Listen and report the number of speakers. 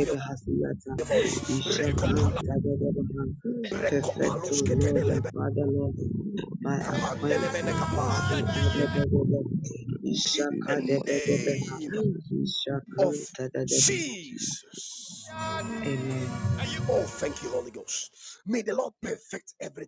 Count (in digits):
3